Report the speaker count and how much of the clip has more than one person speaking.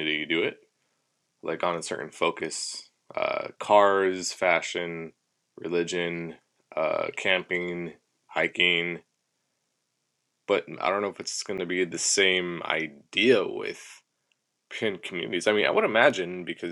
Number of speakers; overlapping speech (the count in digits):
1, no overlap